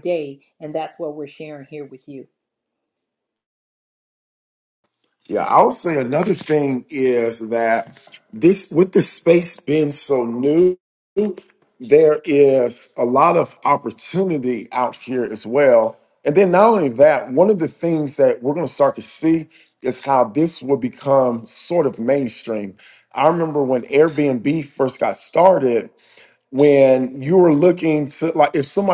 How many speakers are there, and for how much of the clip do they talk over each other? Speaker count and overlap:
two, no overlap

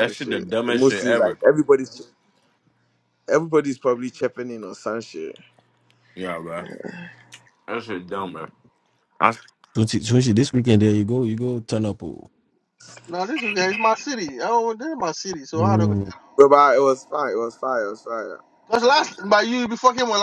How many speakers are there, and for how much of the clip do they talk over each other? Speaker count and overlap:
four, about 11%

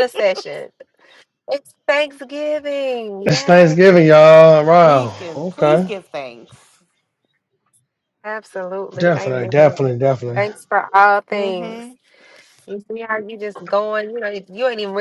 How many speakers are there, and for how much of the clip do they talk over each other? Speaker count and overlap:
three, about 21%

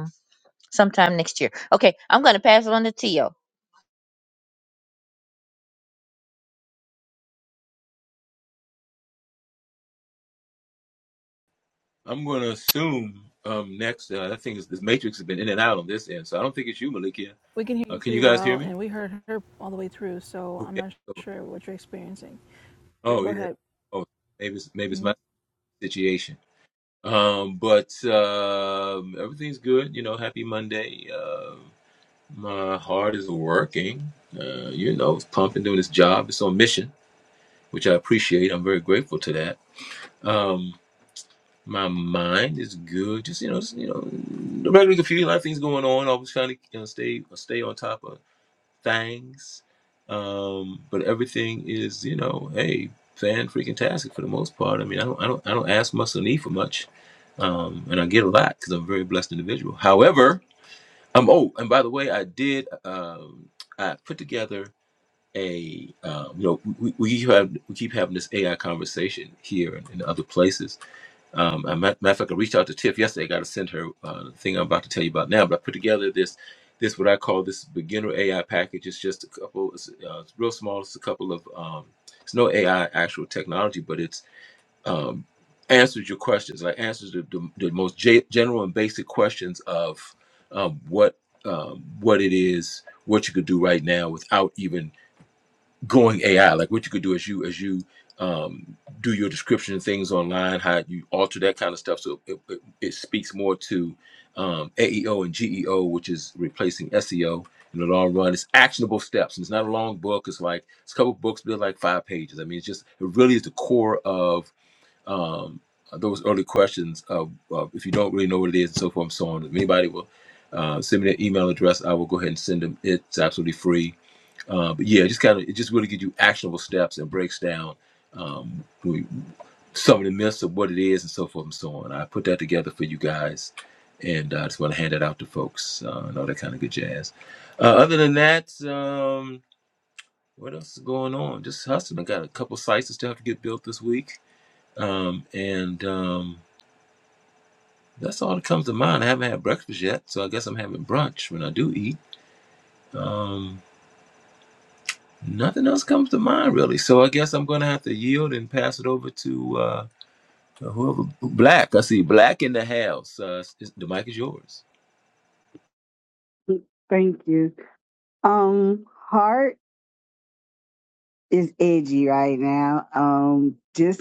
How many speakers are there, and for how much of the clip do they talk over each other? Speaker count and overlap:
four, about 1%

